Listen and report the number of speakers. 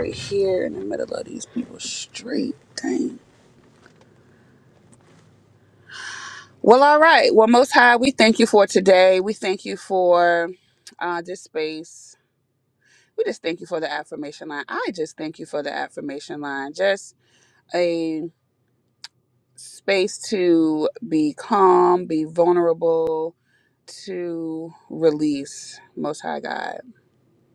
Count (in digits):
1